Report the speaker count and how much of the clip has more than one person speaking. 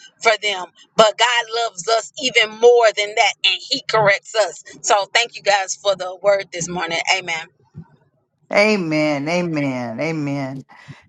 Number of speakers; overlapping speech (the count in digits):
2, no overlap